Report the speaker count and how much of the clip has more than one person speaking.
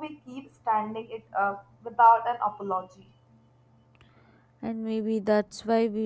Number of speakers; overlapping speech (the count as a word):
two, no overlap